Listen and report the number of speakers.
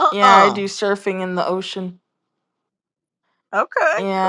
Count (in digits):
2